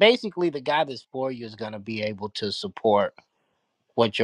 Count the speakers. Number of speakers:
one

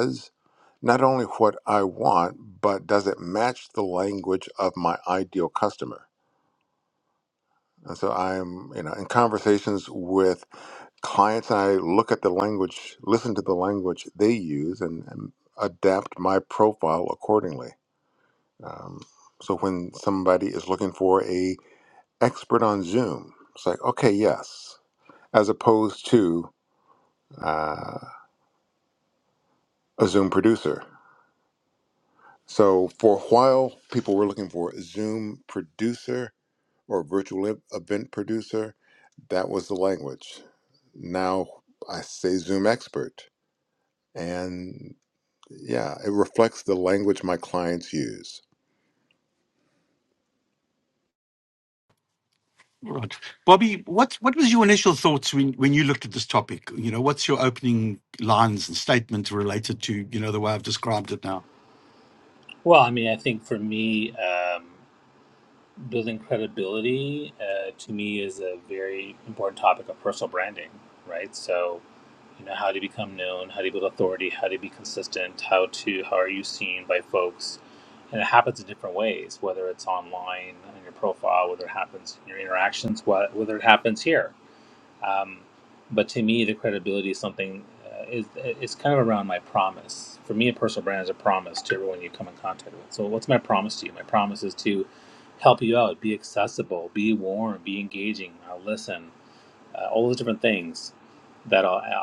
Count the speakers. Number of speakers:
three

